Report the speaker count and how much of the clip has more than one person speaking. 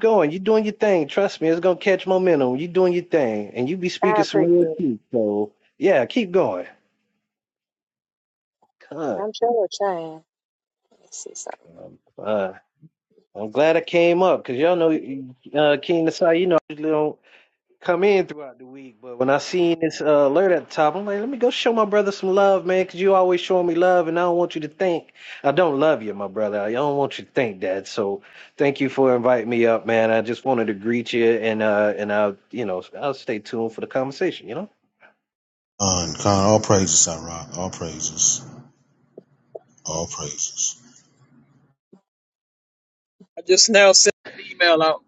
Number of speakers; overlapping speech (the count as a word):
four, about 2%